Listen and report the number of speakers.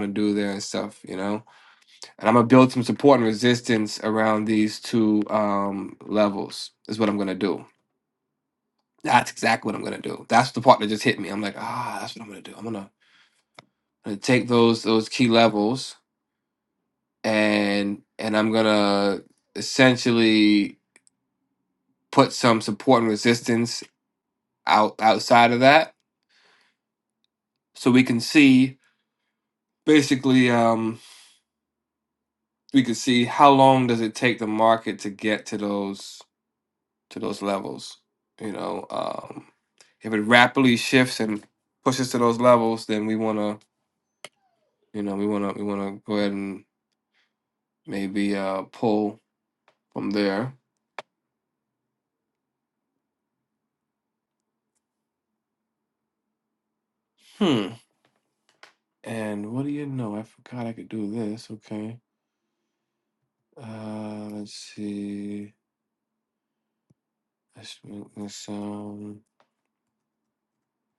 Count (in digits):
1